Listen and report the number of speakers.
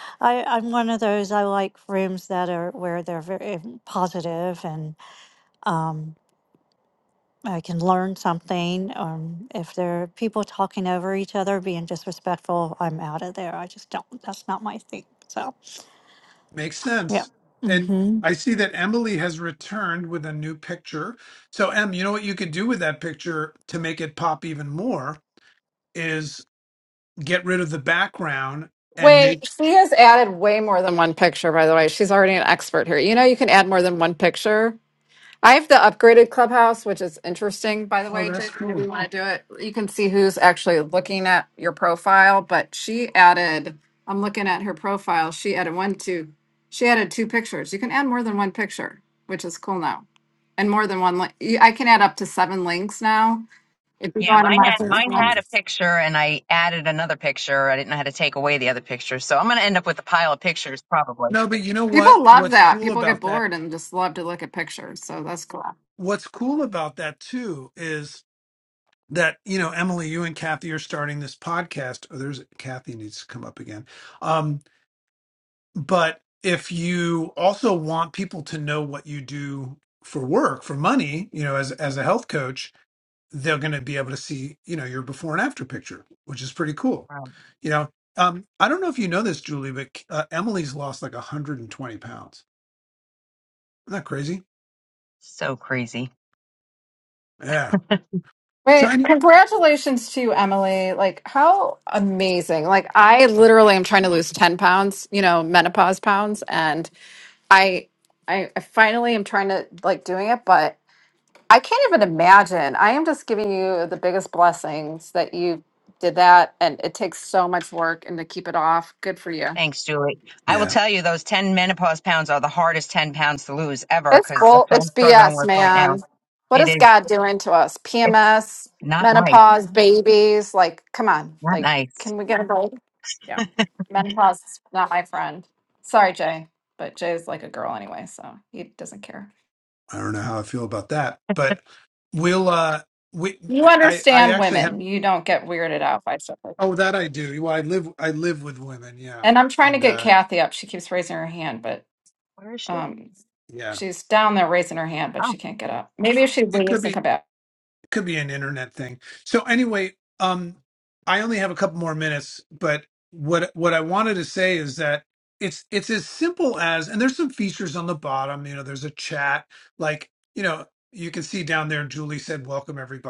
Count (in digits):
4